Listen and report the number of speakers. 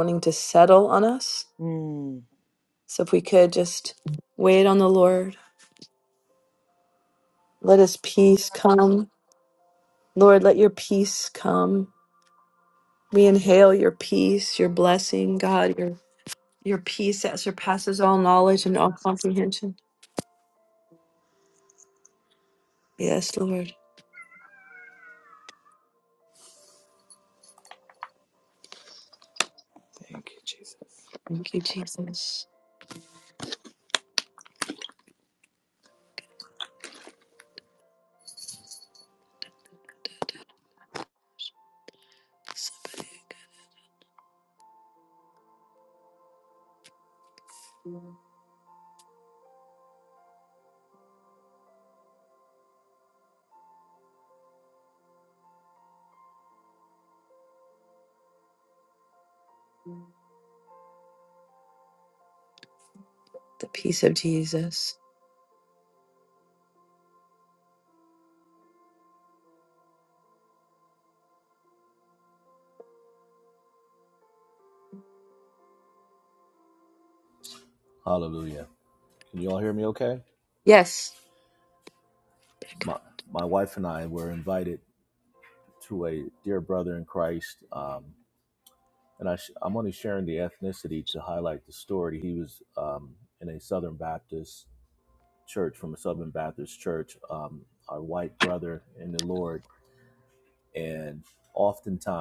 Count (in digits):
3